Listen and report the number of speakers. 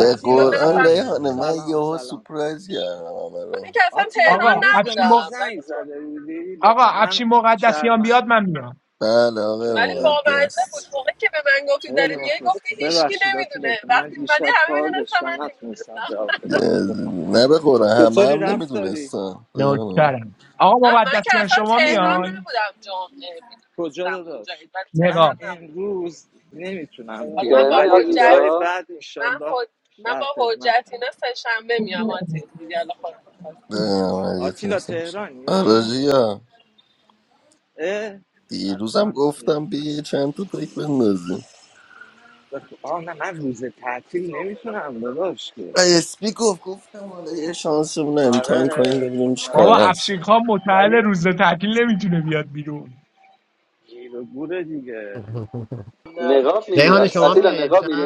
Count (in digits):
6